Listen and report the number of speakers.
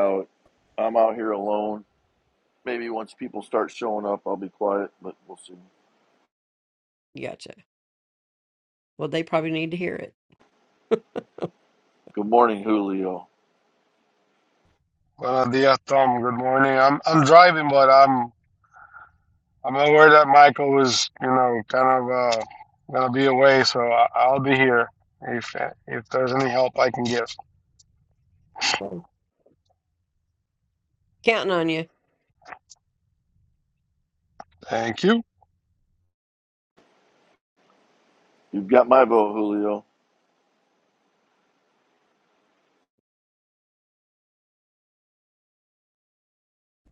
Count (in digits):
3